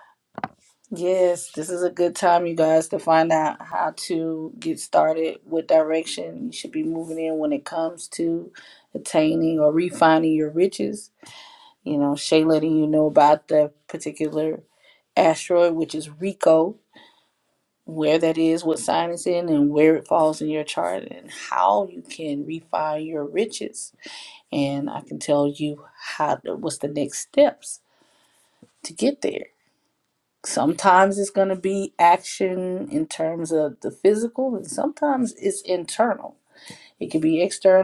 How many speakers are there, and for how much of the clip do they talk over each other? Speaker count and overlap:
one, no overlap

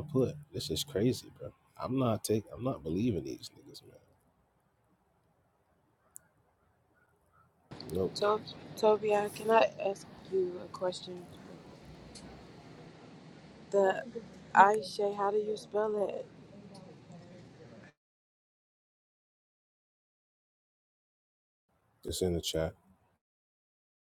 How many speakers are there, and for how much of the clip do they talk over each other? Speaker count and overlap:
two, no overlap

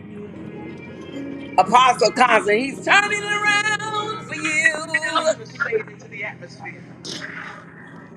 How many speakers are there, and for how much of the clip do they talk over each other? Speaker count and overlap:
one, no overlap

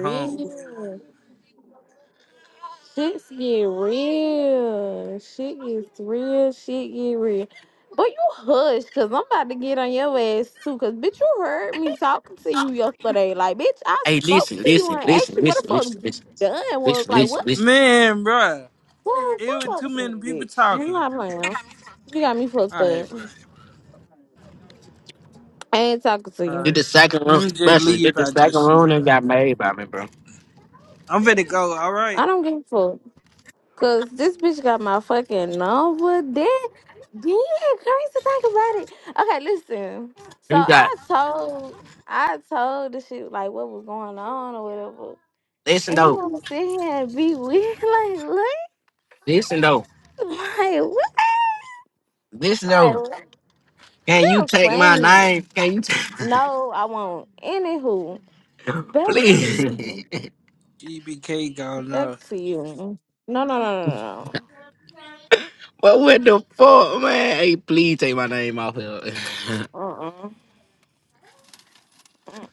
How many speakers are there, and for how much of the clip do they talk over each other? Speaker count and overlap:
three, about 14%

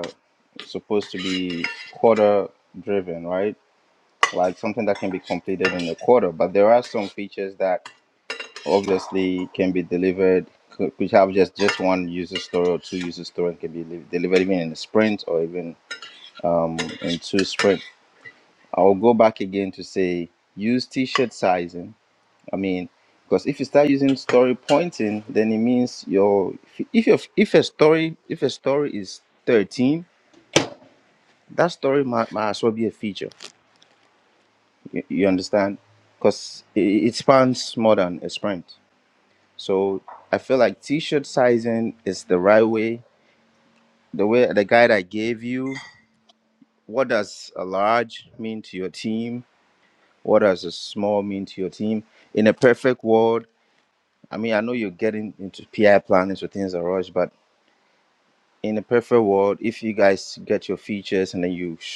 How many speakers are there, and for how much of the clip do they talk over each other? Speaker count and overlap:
one, no overlap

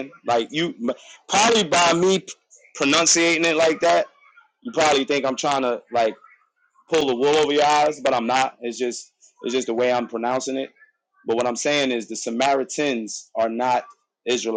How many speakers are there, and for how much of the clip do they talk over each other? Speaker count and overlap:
one, no overlap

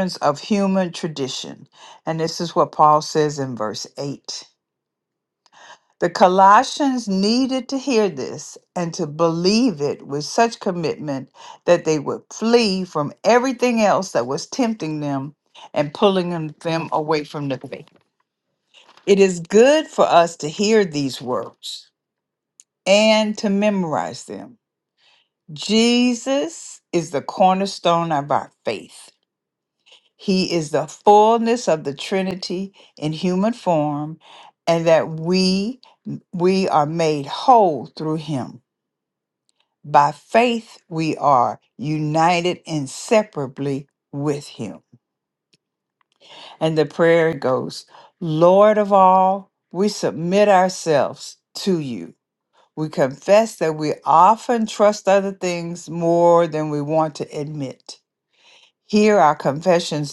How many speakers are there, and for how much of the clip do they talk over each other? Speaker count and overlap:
one, no overlap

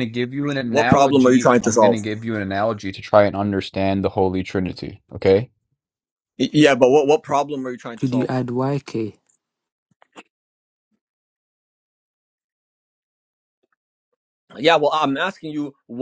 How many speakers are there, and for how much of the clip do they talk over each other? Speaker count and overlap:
three, about 10%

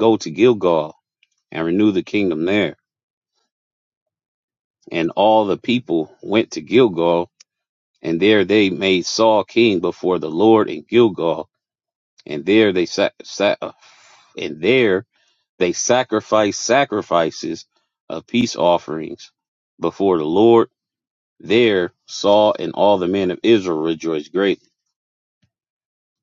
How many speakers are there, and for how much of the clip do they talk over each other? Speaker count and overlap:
one, no overlap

